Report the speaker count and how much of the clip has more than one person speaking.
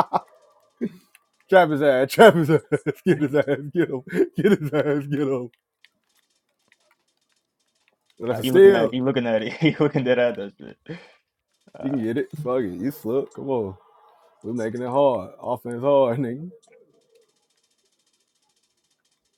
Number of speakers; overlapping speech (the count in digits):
2, about 4%